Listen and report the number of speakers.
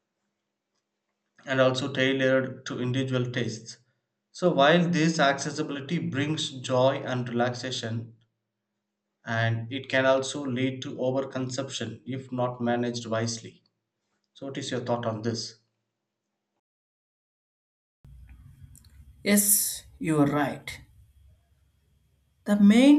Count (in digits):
2